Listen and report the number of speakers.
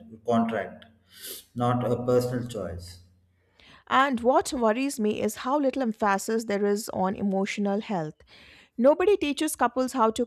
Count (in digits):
2